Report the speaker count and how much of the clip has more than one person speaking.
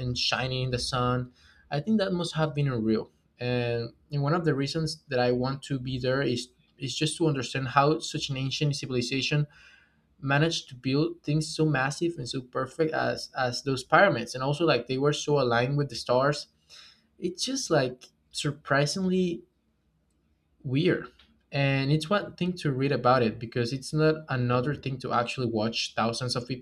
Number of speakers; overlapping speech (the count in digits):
1, no overlap